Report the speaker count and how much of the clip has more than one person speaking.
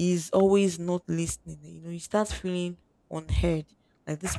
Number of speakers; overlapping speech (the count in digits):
1, no overlap